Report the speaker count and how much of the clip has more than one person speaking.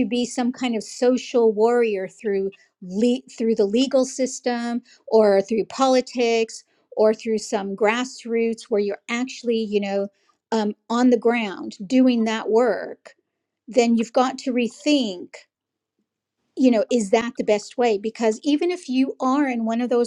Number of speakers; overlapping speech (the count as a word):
one, no overlap